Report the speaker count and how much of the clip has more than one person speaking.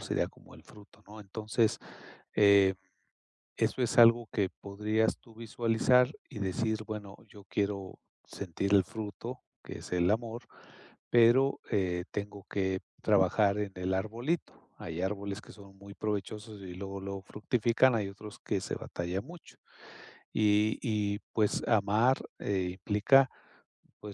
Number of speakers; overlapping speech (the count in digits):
1, no overlap